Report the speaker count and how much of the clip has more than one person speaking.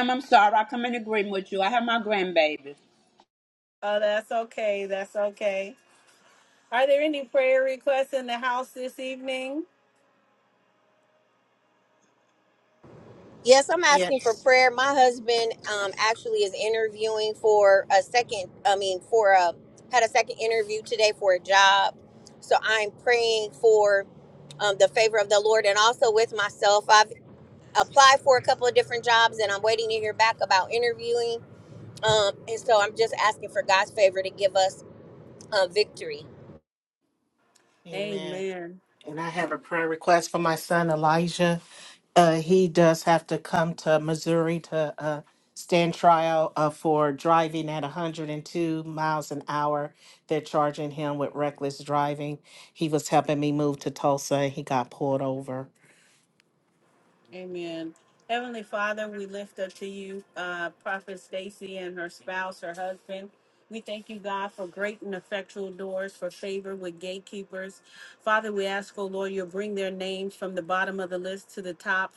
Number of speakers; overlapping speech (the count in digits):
4, about 1%